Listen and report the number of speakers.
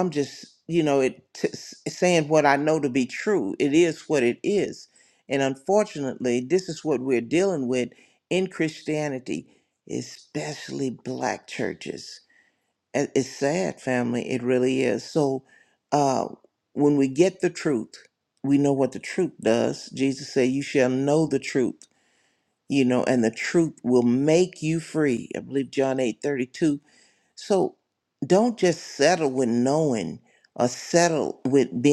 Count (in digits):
1